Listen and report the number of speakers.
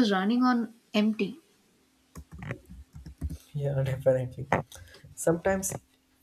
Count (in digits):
2